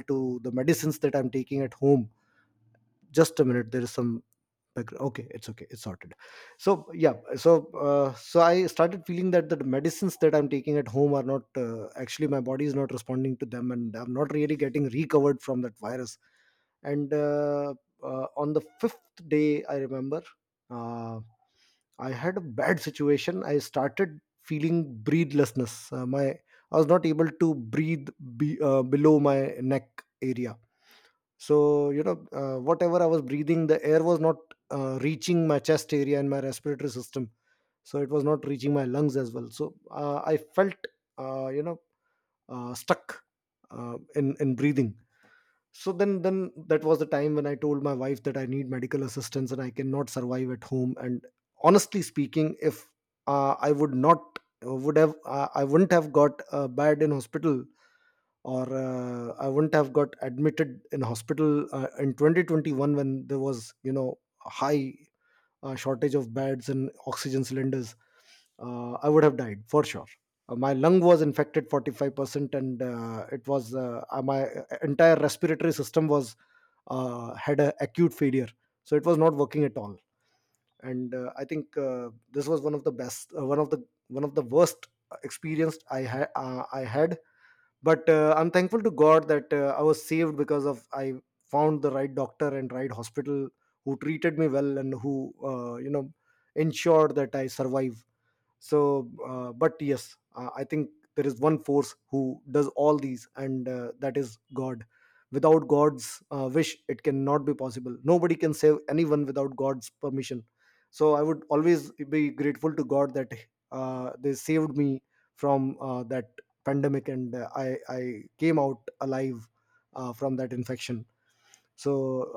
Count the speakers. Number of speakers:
1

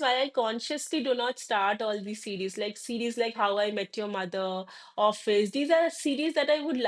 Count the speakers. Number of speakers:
1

